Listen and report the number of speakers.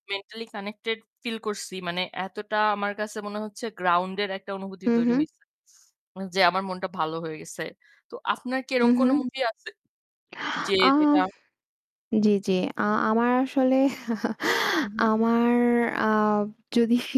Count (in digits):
2